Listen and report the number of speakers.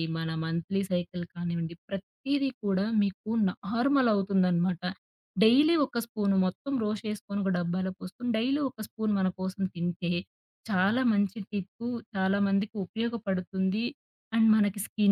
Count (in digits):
1